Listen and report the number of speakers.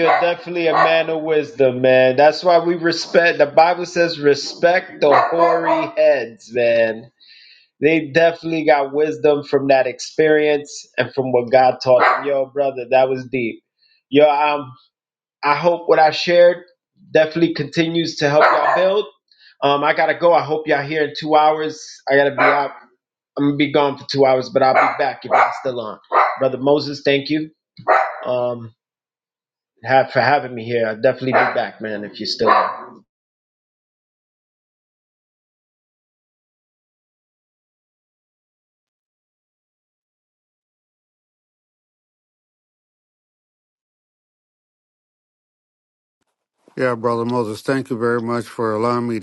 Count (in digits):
2